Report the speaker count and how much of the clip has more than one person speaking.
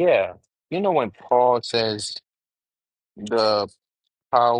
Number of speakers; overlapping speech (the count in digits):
1, no overlap